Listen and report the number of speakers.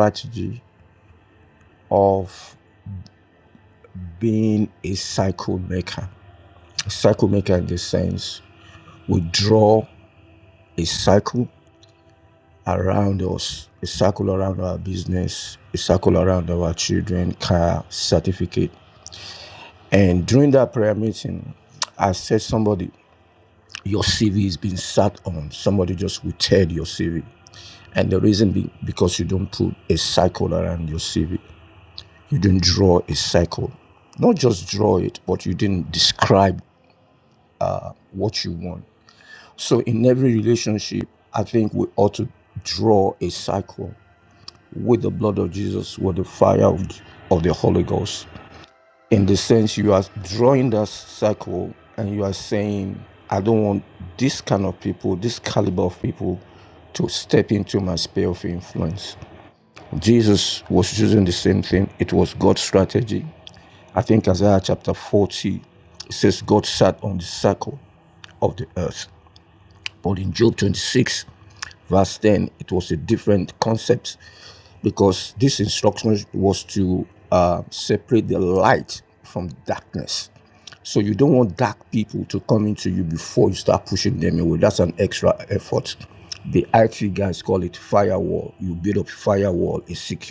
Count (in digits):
1